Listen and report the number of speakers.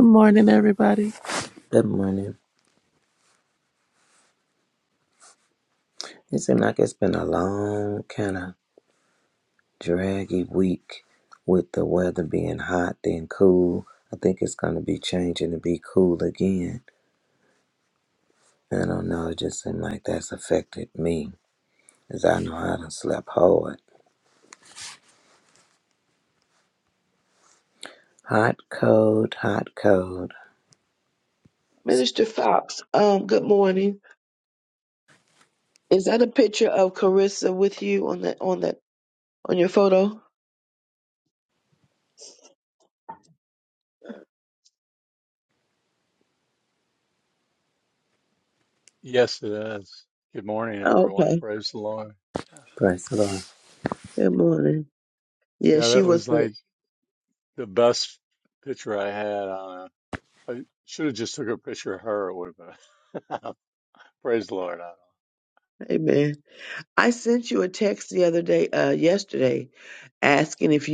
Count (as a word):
four